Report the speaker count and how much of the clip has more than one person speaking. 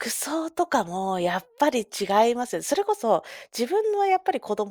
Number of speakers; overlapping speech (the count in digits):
1, no overlap